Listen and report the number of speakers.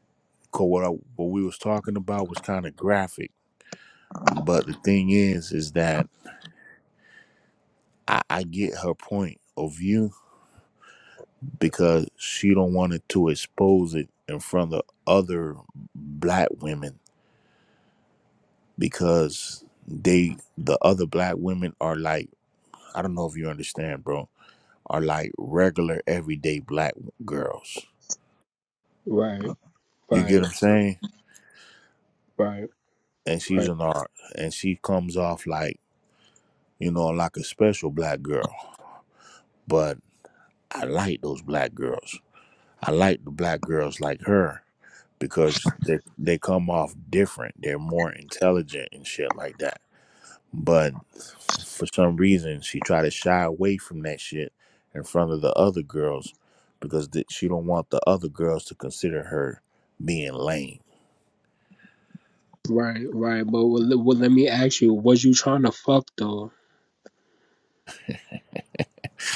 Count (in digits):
2